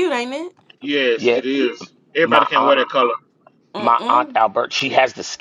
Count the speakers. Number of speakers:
three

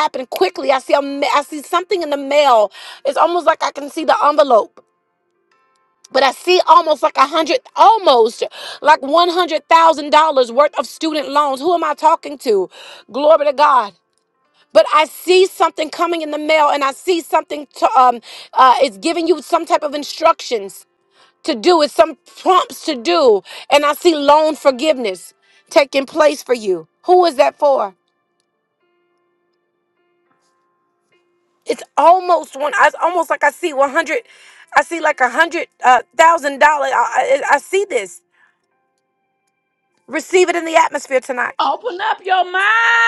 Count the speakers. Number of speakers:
two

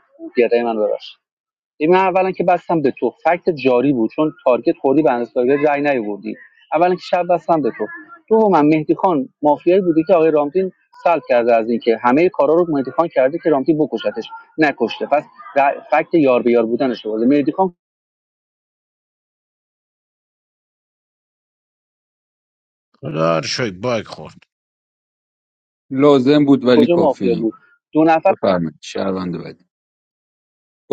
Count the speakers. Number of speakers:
three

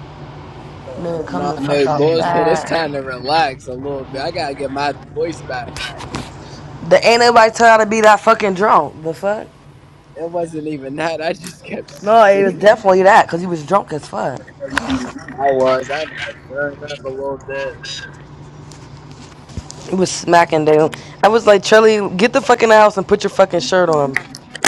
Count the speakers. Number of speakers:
two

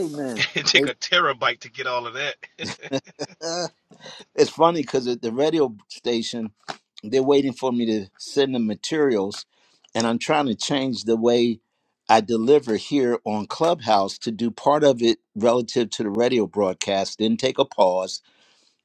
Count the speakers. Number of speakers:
two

